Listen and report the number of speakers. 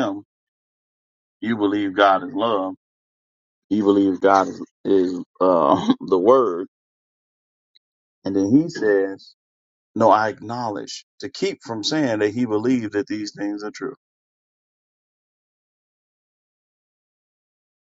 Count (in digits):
1